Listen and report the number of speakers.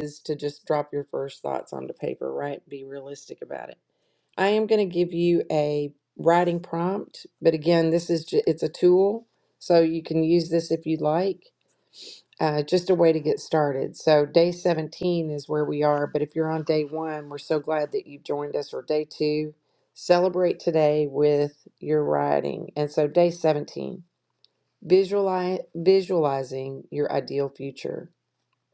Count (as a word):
one